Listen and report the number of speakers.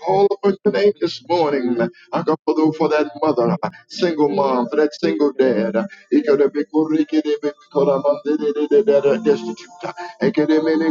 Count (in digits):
1